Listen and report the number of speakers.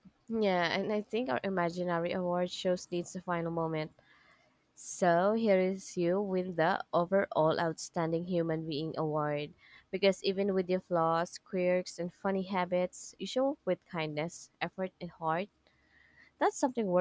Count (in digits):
1